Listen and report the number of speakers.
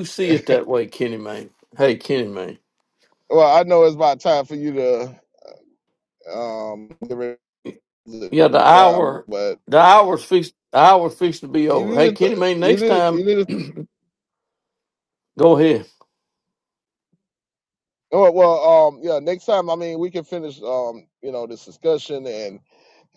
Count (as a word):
two